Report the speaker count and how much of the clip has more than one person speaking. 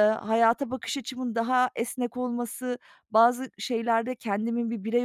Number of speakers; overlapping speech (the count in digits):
1, no overlap